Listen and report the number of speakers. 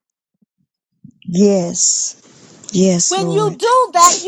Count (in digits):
2